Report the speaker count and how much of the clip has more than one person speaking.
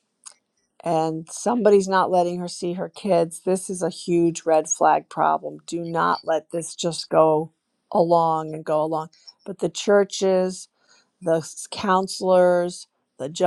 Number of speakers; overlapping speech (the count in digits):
1, no overlap